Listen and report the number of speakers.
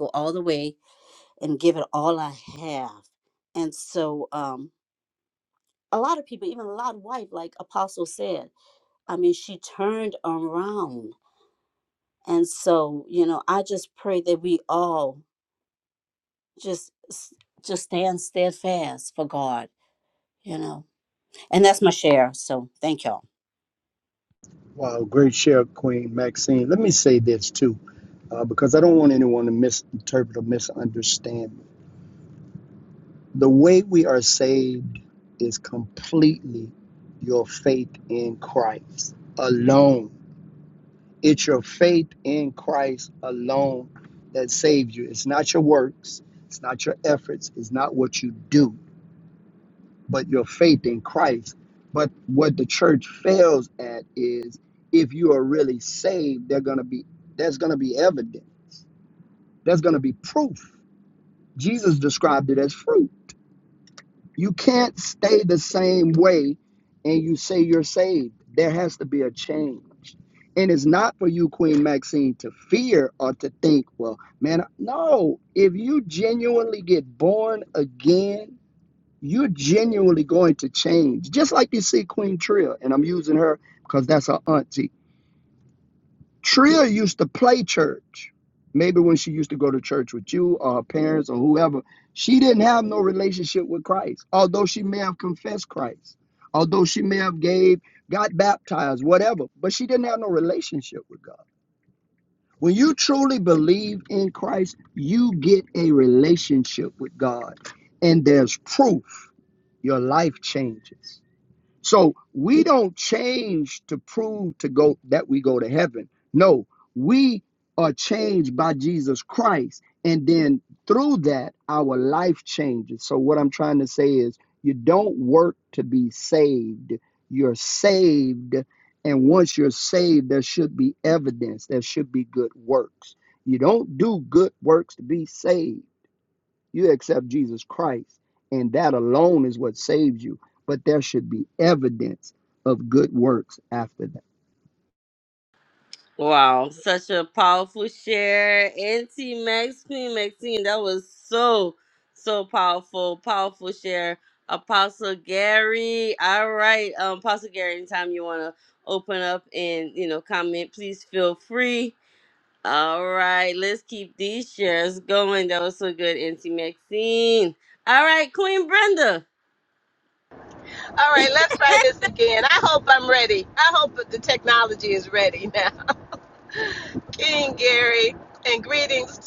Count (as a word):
four